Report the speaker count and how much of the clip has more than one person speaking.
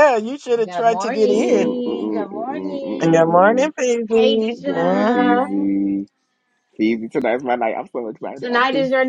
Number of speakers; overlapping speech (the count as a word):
three, about 52%